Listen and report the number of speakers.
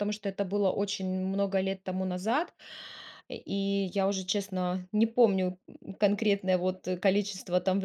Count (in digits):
1